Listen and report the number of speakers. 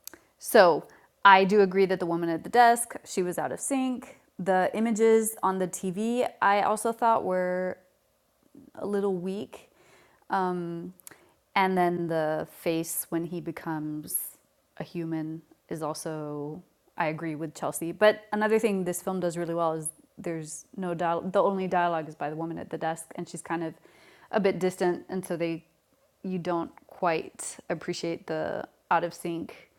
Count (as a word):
one